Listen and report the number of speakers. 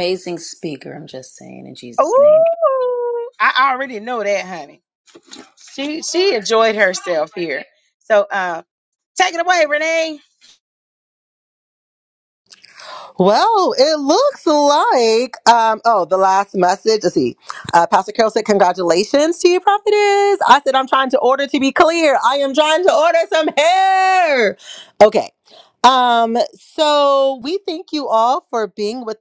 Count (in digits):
3